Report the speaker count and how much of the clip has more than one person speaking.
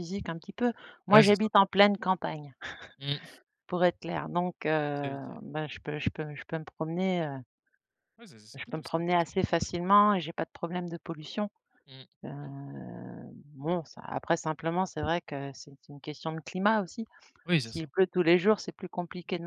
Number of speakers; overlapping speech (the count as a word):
two, about 5%